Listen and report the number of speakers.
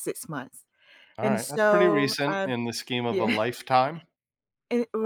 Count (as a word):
two